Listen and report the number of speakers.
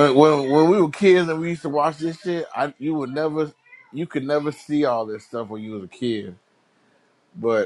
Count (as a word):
one